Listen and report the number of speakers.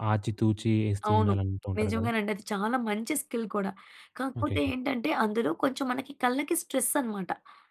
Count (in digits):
2